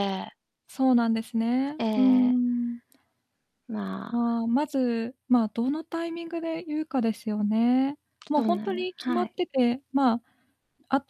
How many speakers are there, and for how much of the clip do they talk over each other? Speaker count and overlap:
two, about 15%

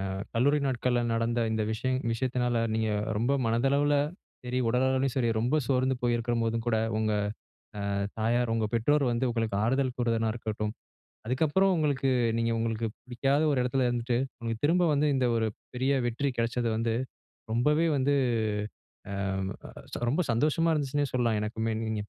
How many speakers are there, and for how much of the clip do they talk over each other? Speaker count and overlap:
one, no overlap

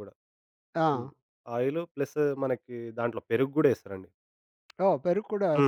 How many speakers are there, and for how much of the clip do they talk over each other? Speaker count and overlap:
two, about 5%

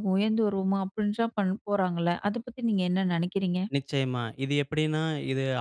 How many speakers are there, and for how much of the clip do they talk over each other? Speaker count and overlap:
two, no overlap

